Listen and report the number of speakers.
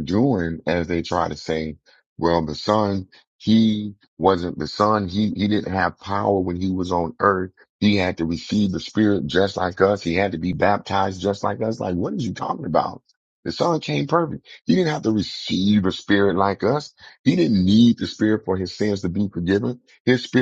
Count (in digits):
1